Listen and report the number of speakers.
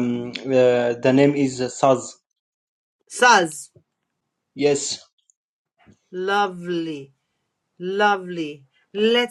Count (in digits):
2